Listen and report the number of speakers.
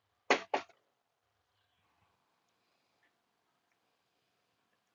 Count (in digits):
0